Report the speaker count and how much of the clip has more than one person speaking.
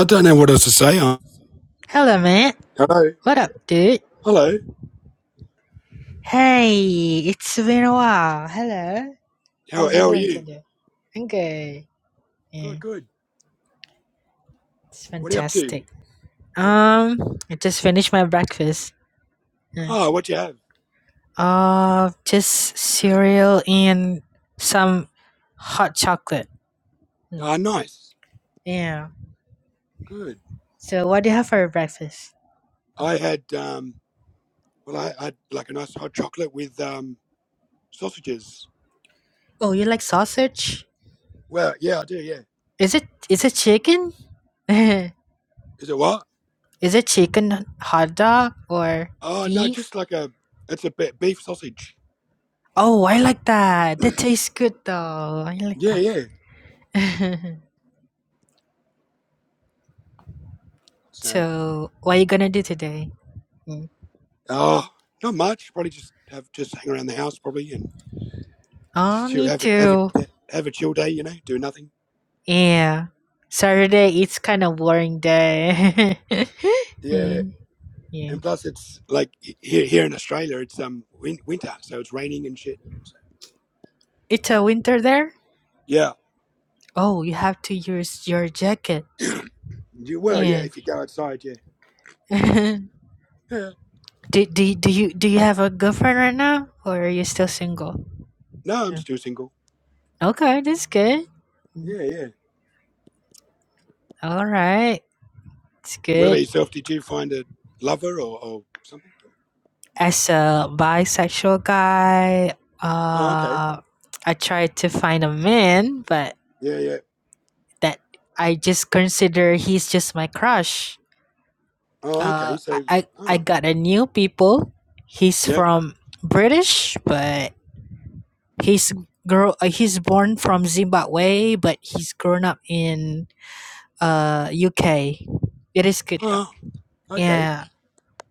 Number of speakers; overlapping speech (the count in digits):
2, about 5%